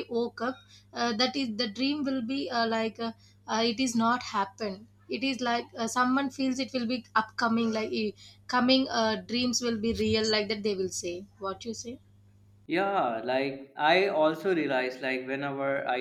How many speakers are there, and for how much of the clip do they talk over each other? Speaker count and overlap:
2, no overlap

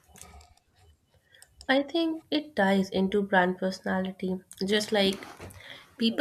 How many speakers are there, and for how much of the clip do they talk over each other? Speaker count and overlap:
1, no overlap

